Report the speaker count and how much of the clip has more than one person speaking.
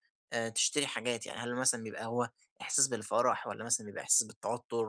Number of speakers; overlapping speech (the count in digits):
1, no overlap